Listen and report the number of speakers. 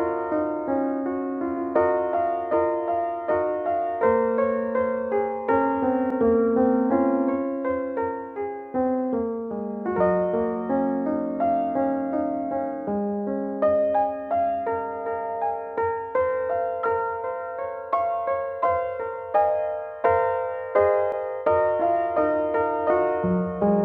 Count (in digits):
0